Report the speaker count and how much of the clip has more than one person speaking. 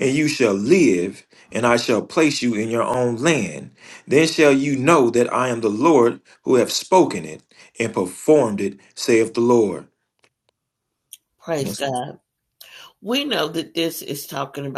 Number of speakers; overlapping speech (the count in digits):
2, about 1%